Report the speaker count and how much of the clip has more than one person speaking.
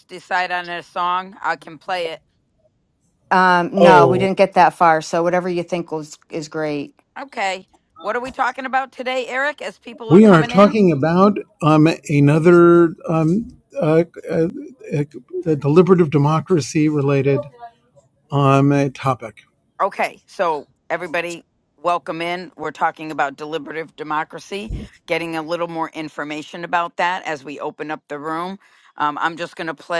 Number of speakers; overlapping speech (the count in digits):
3, about 4%